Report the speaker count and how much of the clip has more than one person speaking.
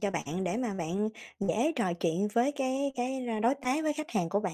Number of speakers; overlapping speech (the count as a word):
one, no overlap